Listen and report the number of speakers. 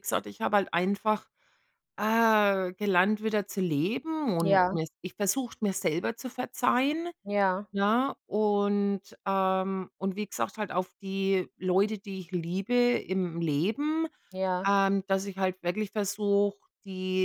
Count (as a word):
two